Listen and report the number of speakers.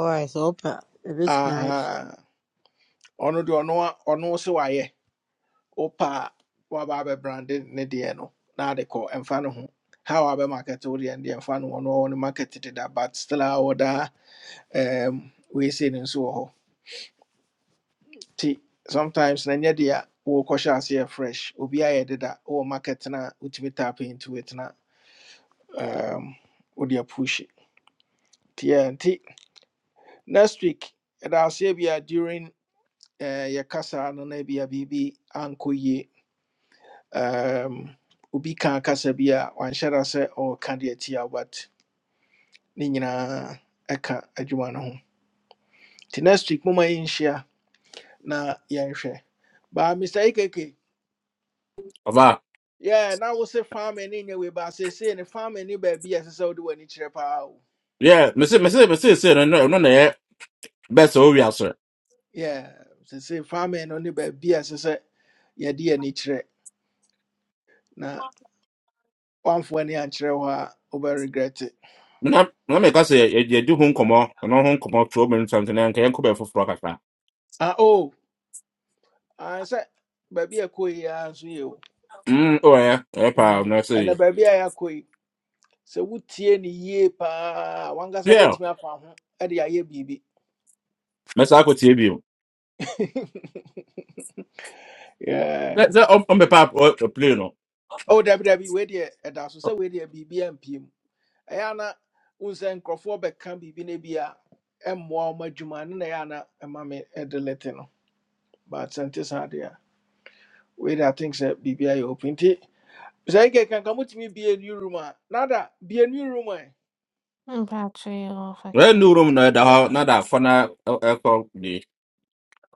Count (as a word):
four